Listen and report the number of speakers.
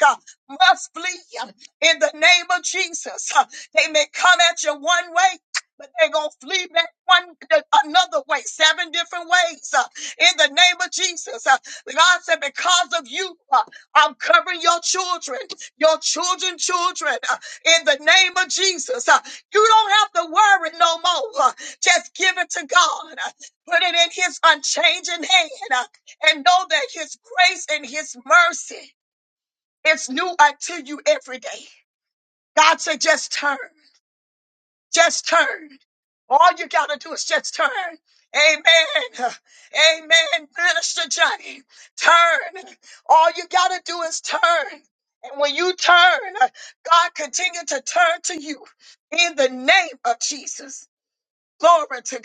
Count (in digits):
1